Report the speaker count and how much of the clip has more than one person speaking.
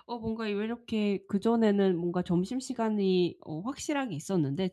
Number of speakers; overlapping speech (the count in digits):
1, no overlap